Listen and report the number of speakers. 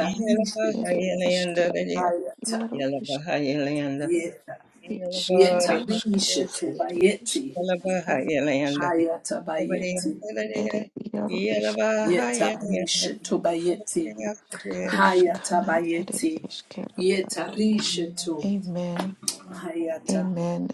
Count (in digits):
3